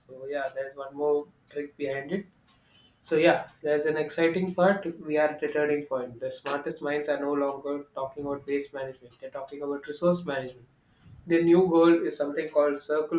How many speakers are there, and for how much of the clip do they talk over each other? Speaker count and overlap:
1, no overlap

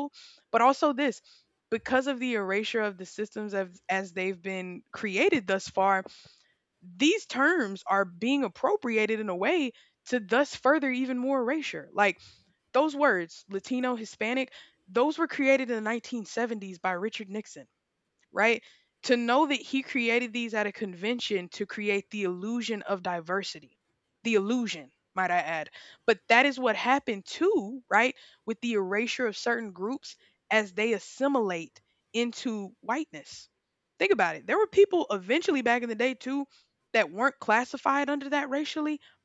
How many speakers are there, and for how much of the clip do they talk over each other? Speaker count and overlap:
1, no overlap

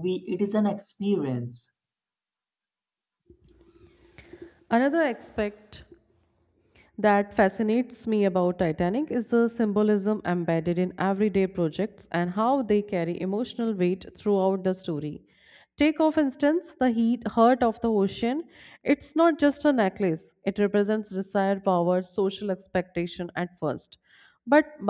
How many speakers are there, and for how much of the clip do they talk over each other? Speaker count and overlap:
2, no overlap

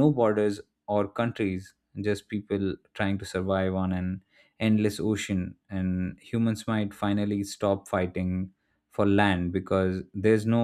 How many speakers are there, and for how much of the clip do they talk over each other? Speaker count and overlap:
1, no overlap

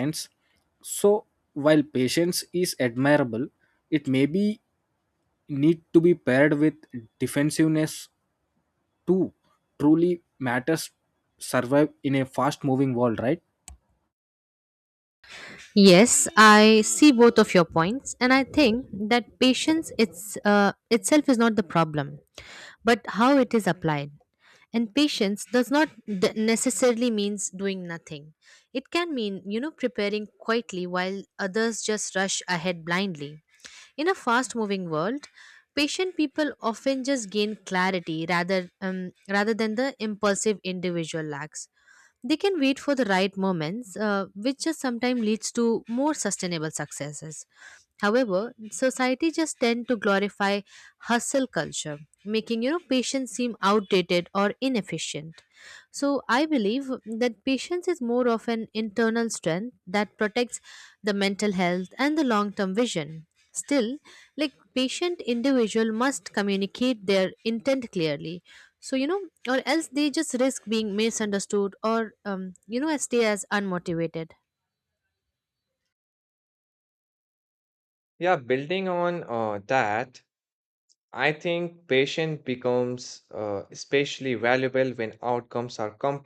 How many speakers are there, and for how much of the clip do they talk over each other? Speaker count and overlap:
3, no overlap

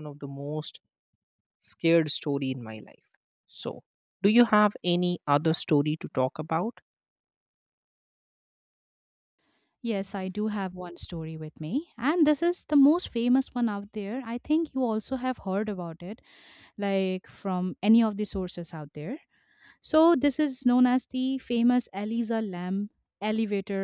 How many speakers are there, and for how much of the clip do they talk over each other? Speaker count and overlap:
2, no overlap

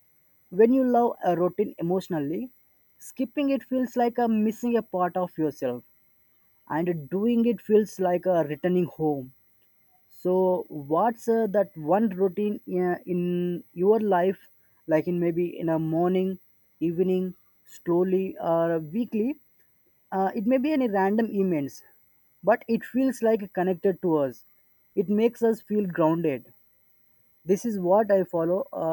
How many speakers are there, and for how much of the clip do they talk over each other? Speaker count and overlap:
1, no overlap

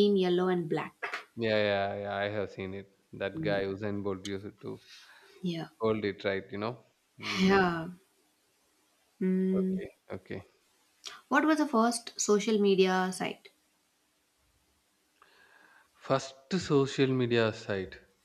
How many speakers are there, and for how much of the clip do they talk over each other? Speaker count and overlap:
2, about 5%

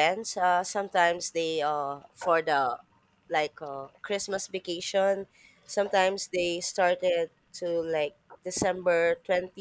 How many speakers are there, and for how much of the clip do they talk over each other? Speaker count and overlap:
1, no overlap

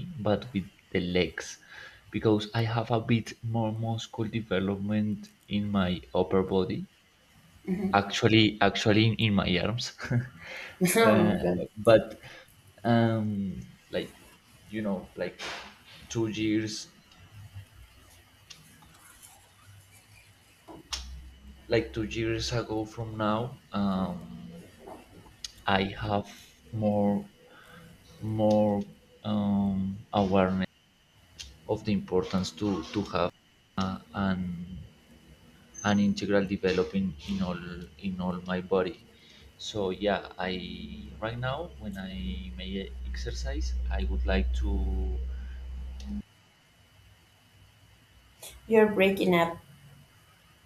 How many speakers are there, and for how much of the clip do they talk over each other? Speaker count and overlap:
2, about 1%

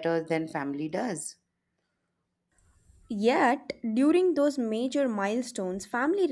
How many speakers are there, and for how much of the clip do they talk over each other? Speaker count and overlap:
2, no overlap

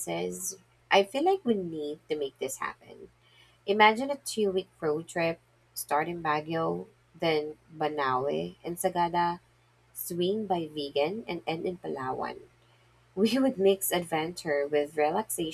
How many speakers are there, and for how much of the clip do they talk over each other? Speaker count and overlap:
1, no overlap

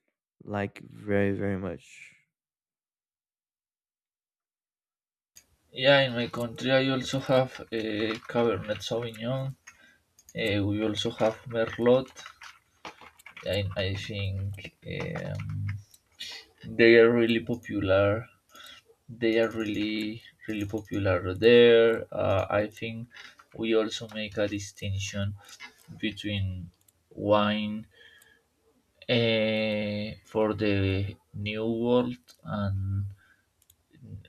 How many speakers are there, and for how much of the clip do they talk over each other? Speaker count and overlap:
2, no overlap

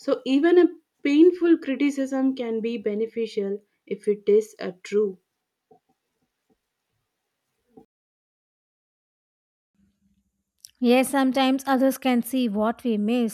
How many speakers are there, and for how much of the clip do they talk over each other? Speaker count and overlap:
2, no overlap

